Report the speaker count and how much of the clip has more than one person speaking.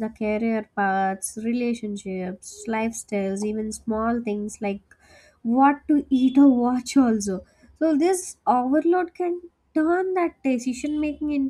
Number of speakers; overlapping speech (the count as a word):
one, no overlap